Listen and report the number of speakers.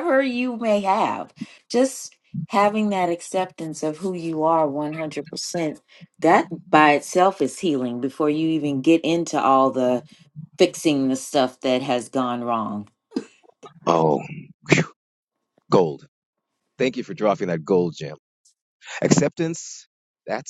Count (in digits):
2